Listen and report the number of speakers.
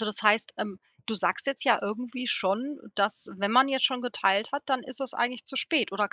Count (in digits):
1